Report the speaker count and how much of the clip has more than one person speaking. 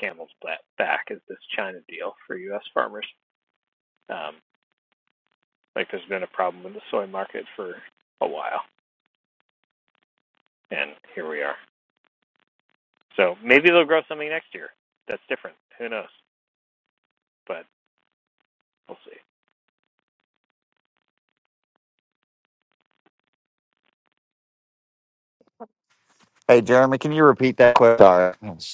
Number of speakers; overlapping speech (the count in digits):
2, no overlap